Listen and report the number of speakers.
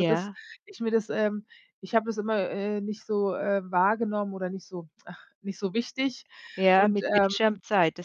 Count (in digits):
2